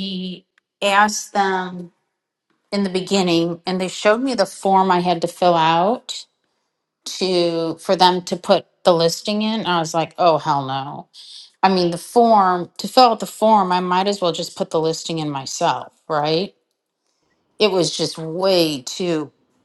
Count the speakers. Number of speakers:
1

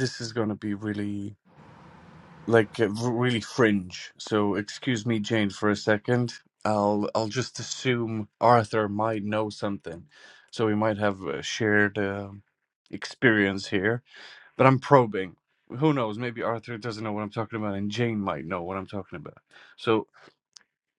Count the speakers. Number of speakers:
1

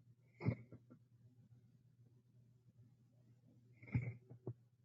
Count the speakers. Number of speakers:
0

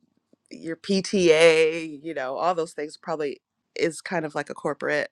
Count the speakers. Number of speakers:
1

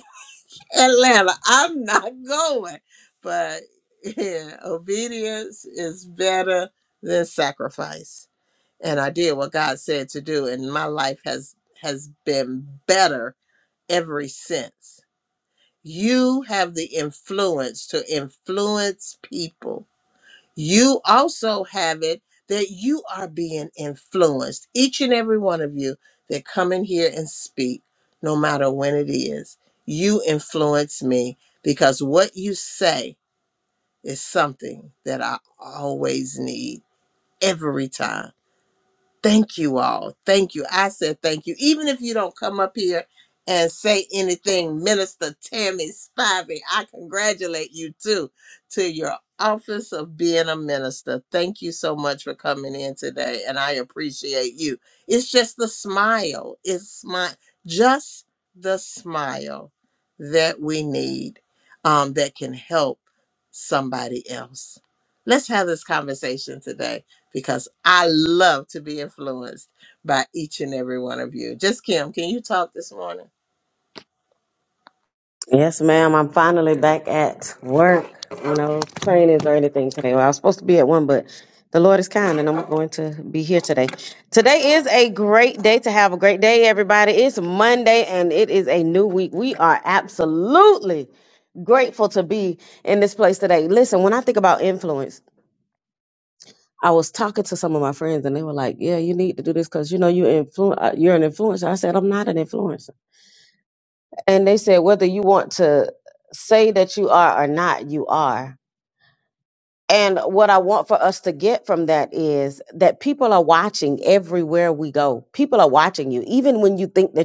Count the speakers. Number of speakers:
2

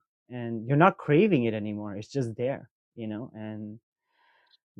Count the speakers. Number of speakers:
1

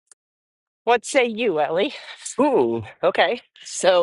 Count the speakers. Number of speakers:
2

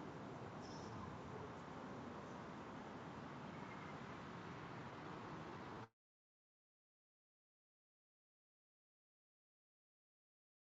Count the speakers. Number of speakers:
0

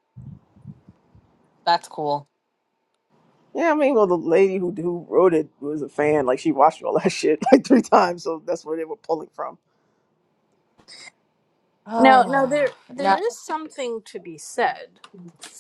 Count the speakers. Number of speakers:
3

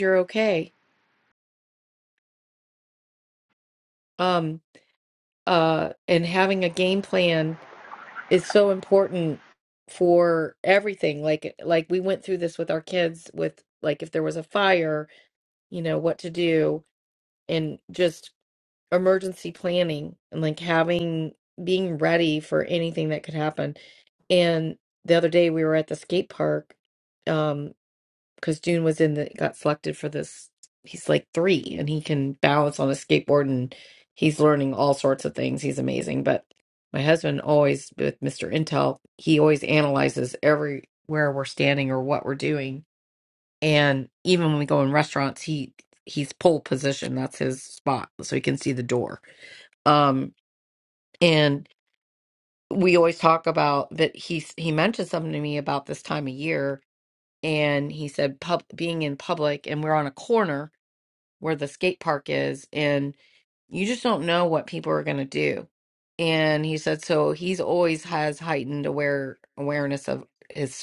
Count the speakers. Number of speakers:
1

